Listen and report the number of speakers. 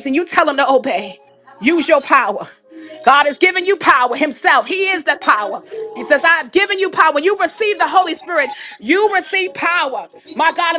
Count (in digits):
1